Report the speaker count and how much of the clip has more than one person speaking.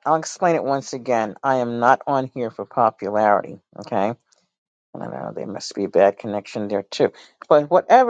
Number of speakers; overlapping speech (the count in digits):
1, no overlap